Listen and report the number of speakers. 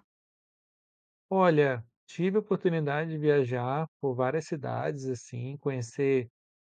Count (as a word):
one